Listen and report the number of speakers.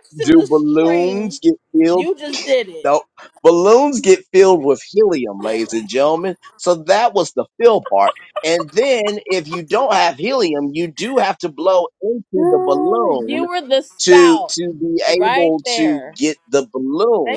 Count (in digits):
2